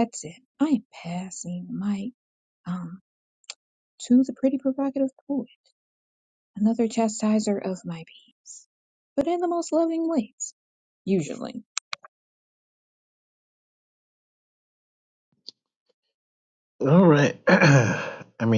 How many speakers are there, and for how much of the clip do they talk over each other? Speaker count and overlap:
2, no overlap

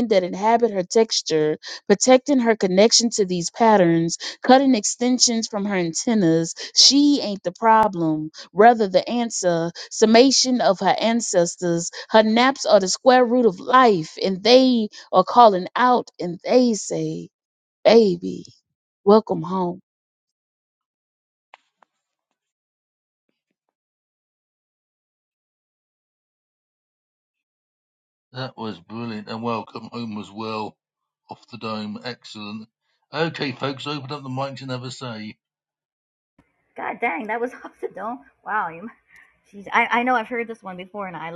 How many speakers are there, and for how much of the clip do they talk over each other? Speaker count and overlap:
3, no overlap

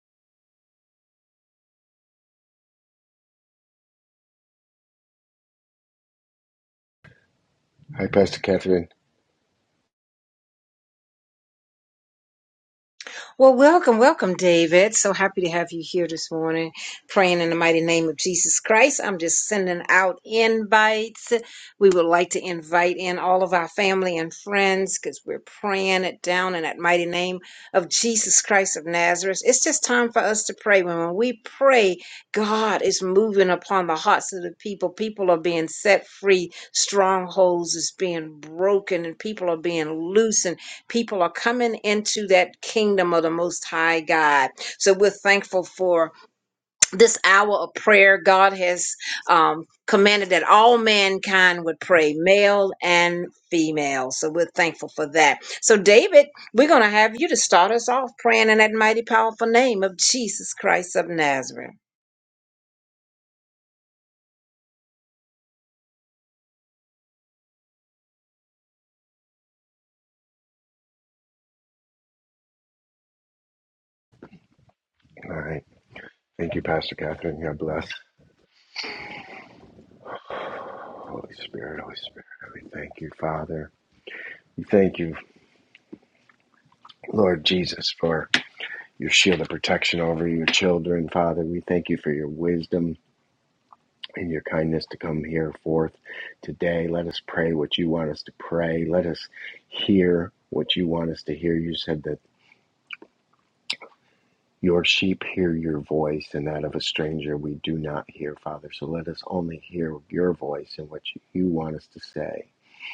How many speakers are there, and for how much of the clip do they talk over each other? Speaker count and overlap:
2, no overlap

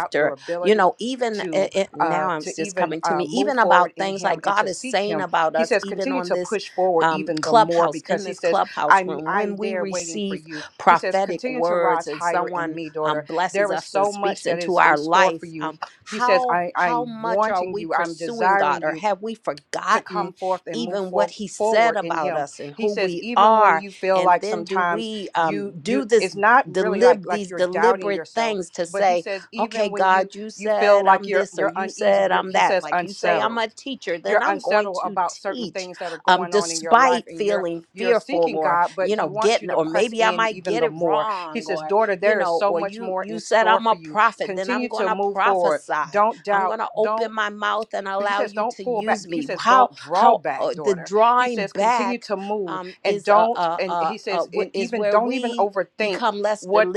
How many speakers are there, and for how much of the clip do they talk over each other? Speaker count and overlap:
2, about 83%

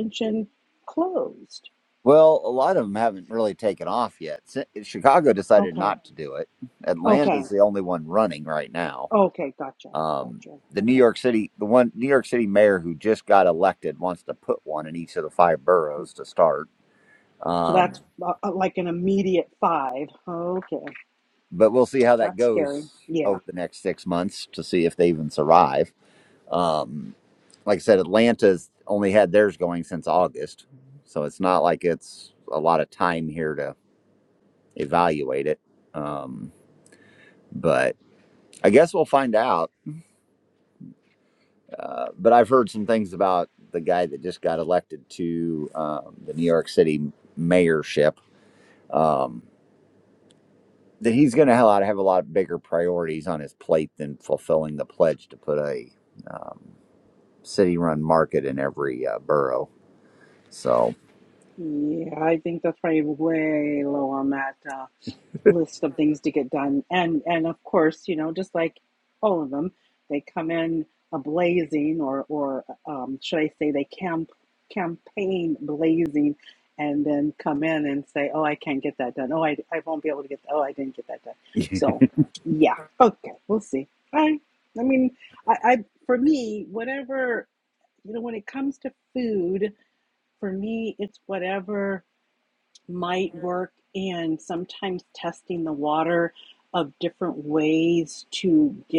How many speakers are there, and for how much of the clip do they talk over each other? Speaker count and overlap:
2, about 2%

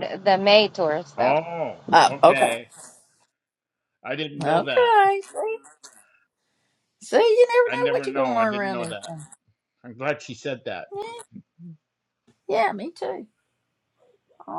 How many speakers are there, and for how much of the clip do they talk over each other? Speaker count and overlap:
3, about 19%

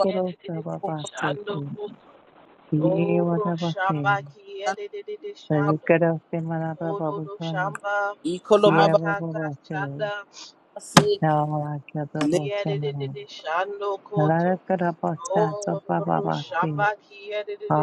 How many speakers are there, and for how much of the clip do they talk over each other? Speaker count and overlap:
3, about 41%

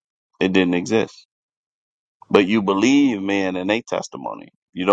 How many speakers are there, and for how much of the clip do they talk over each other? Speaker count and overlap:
1, no overlap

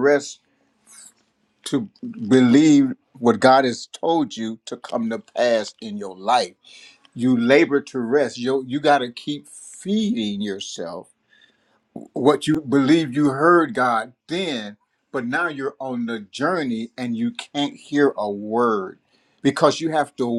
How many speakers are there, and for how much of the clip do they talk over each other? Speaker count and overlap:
1, no overlap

